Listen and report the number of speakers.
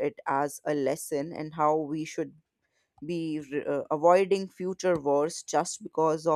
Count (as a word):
one